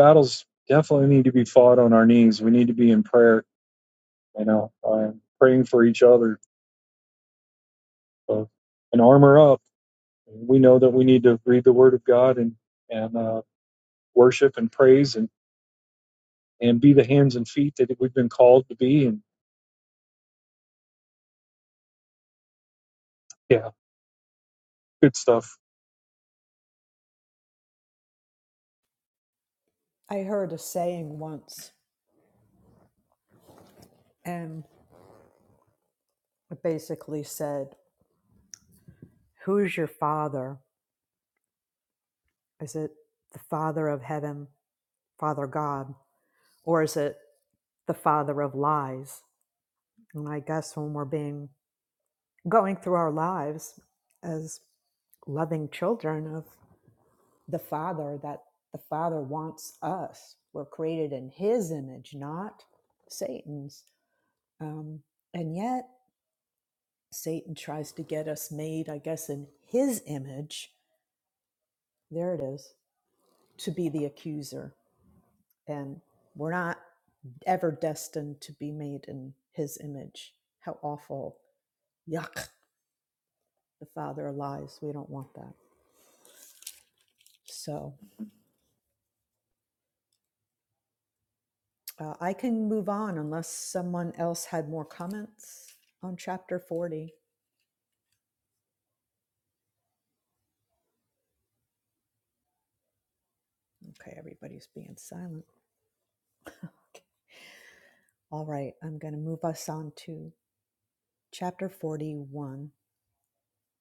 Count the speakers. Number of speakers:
2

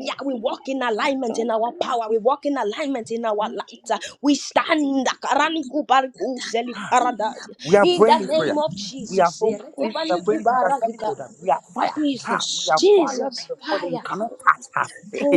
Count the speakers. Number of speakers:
2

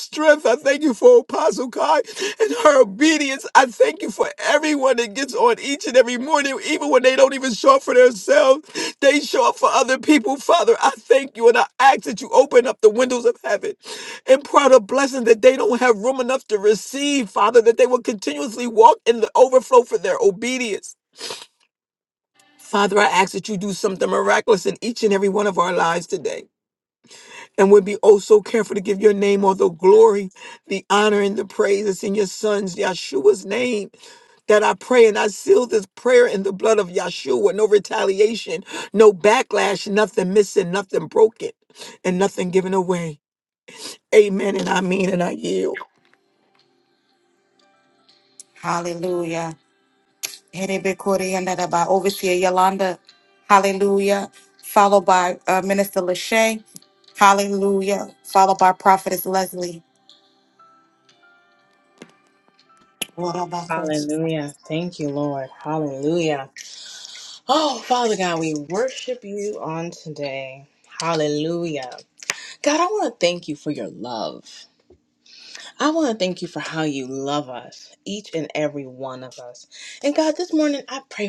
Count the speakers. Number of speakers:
3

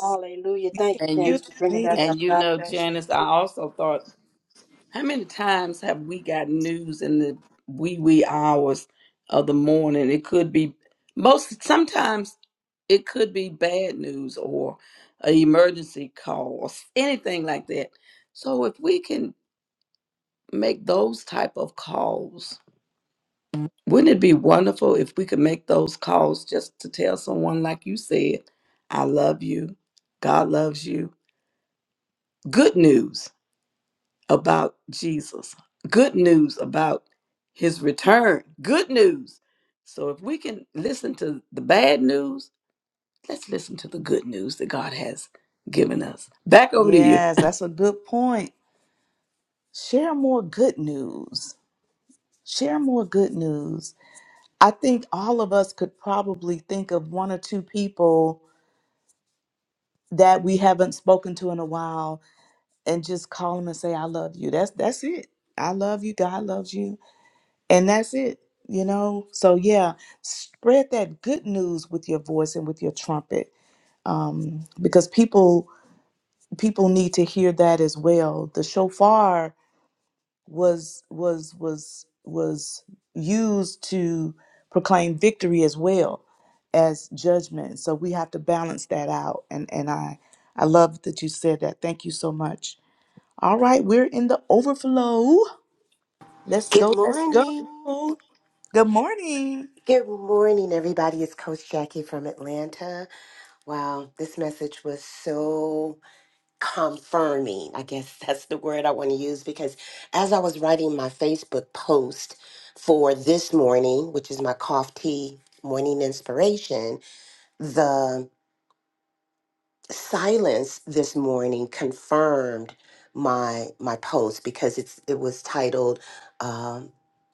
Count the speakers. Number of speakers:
4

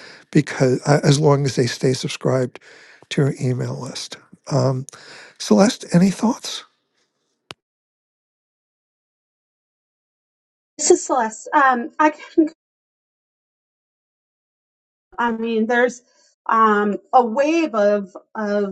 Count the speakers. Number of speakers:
2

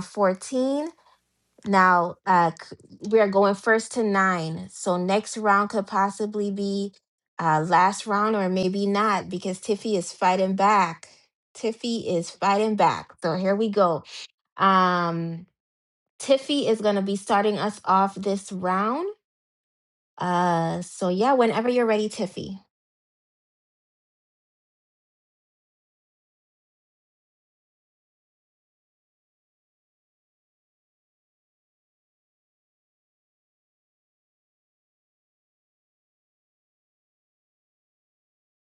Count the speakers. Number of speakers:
1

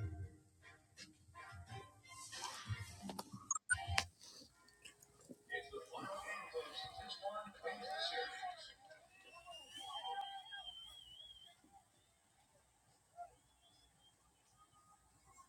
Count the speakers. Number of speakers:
0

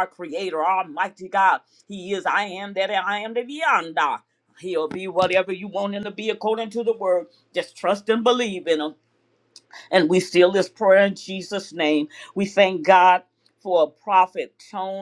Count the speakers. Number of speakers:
1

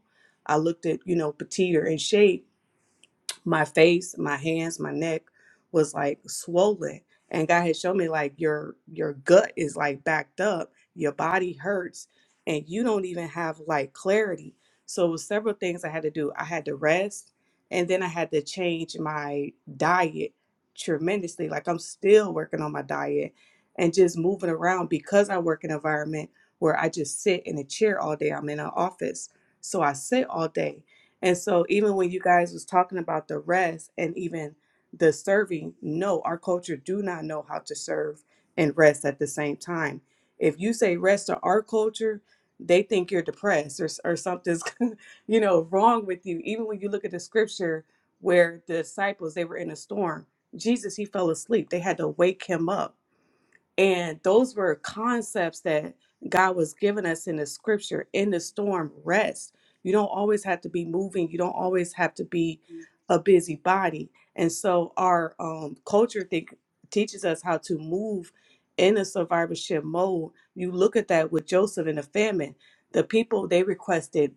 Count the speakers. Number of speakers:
1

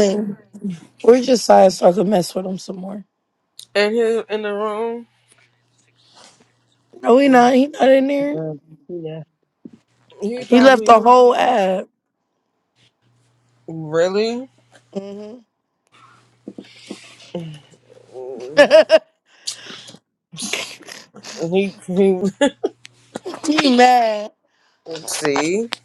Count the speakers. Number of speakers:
3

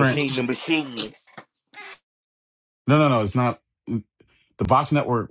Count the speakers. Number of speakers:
2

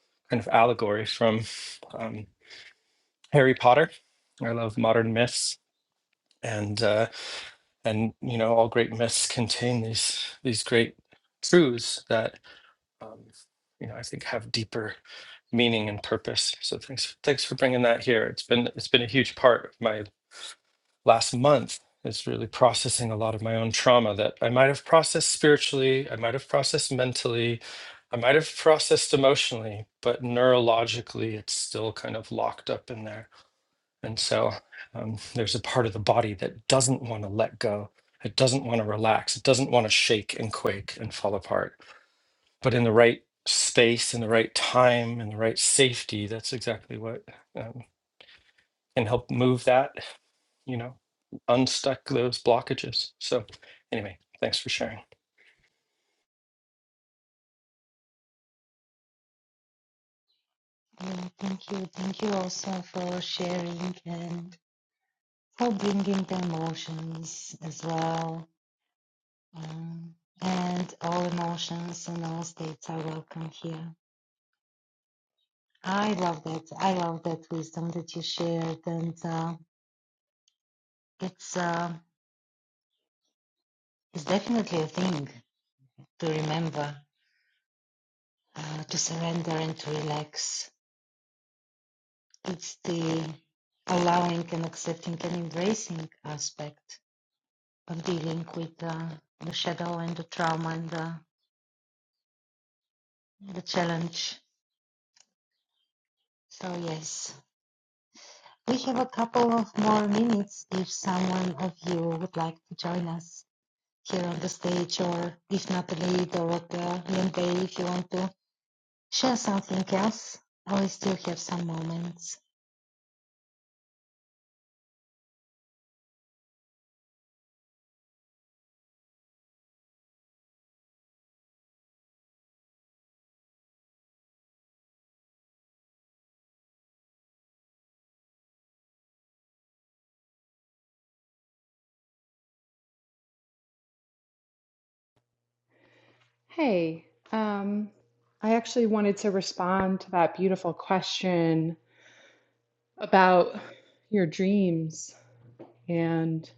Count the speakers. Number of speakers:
3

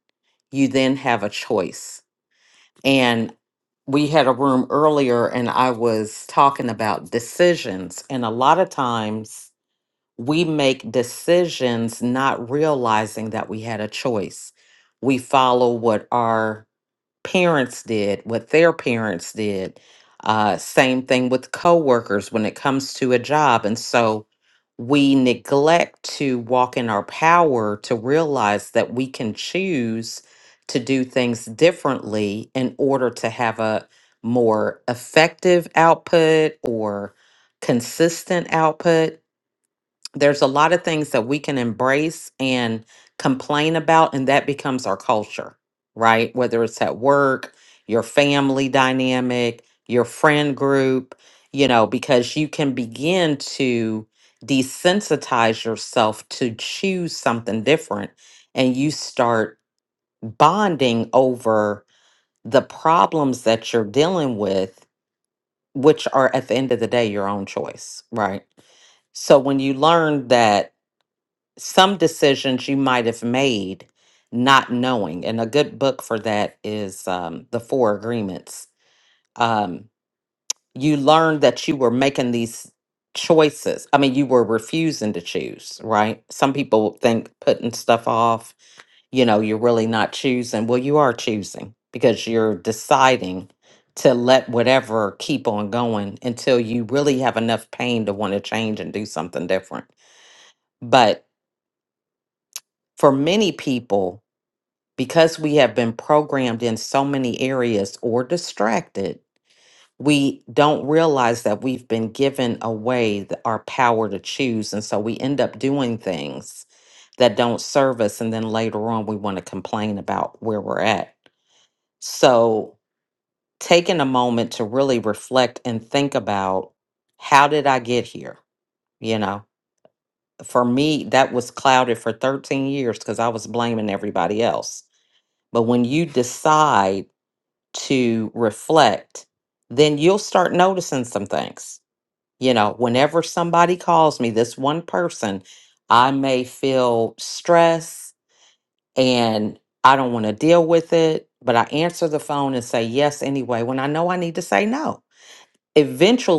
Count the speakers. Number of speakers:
1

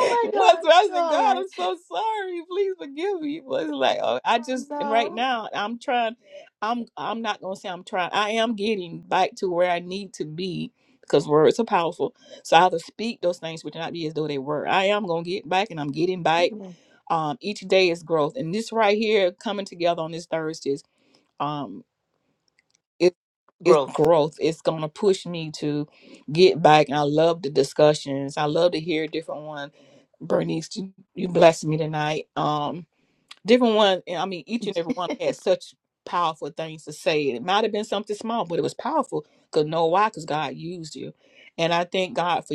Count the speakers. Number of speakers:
2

